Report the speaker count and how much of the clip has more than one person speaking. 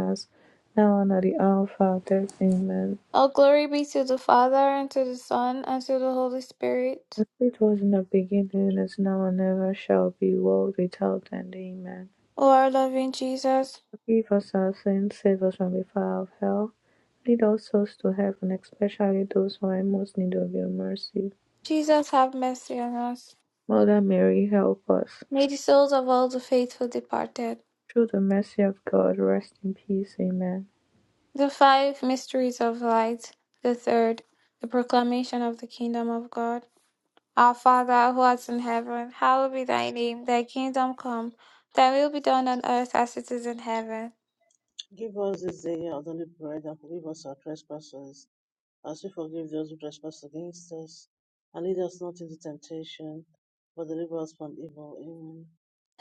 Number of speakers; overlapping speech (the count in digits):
3, no overlap